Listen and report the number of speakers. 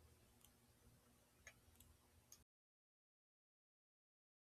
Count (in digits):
0